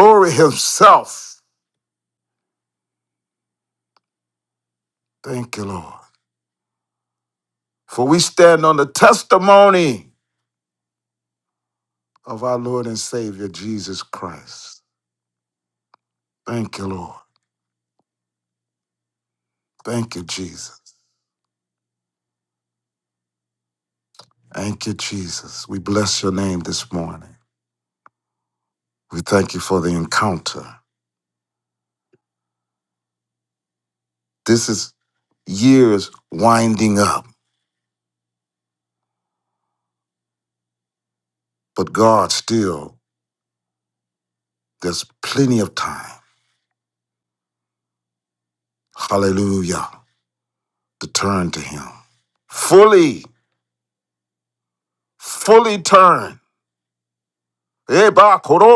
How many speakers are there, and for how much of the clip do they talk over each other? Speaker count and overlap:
1, no overlap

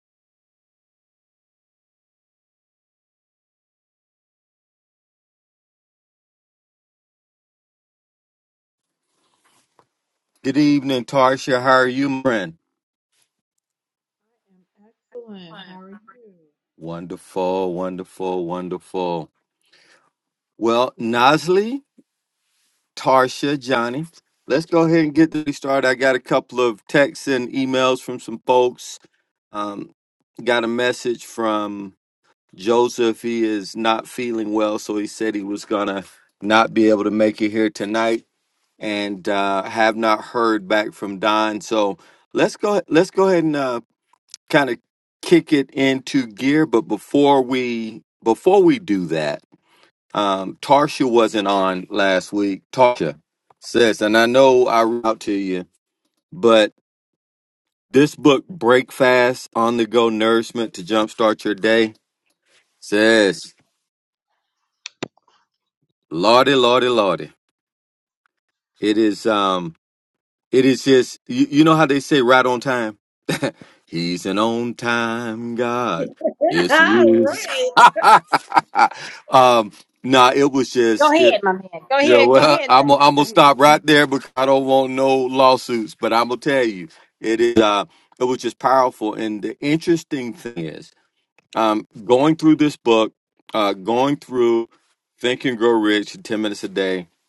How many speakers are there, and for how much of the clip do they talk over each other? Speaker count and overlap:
3, about 2%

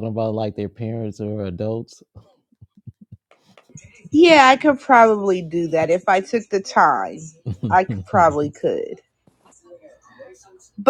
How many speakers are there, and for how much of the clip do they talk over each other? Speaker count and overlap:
2, no overlap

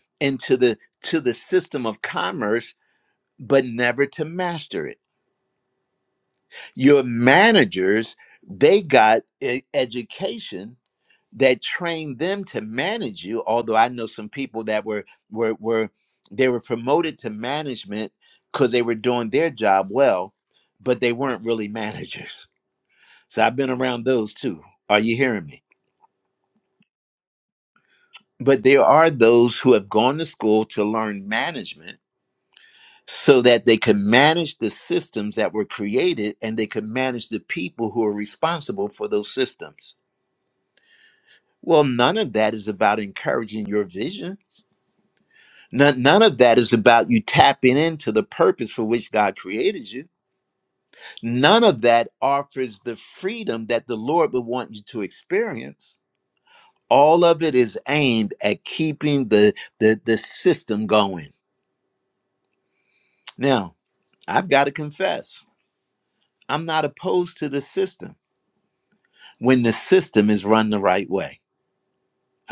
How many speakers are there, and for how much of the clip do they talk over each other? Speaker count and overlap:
1, no overlap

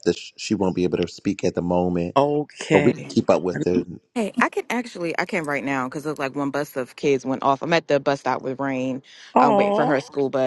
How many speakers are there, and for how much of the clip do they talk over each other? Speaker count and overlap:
3, about 9%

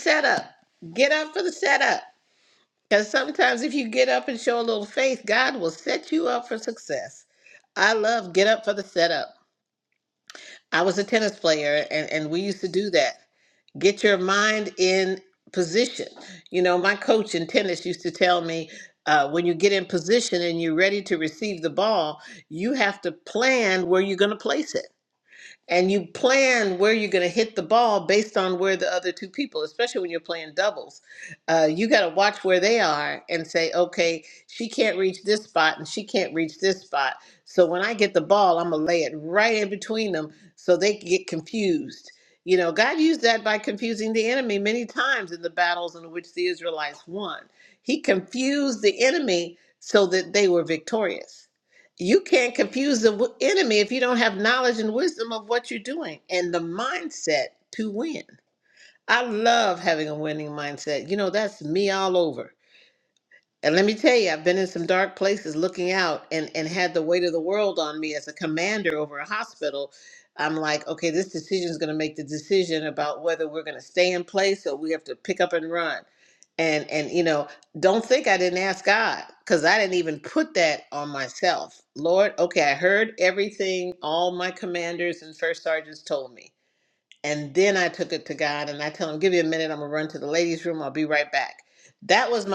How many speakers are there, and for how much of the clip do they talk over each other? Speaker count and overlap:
1, no overlap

